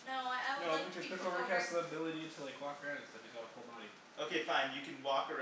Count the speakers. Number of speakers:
three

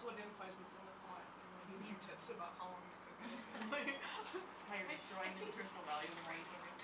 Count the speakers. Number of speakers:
two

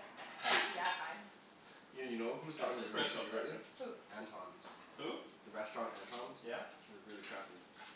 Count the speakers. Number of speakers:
three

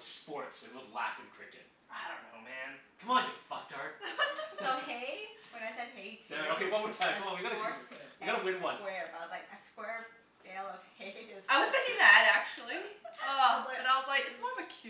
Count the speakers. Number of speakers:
four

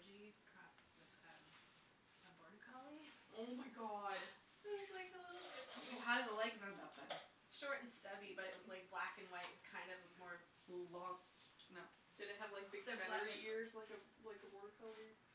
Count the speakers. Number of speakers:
three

